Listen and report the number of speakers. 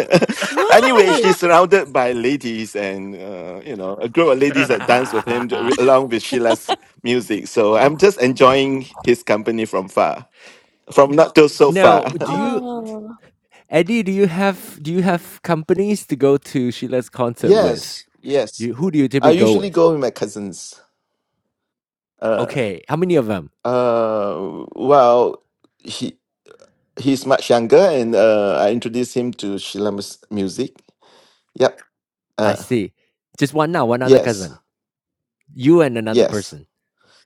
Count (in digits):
3